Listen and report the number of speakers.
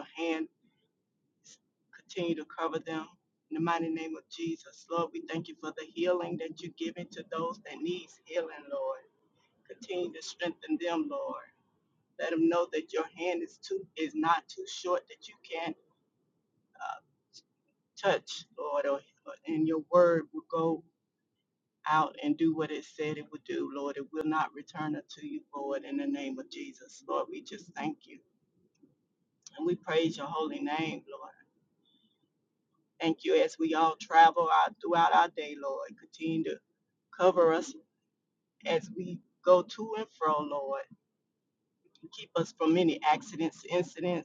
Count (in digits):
1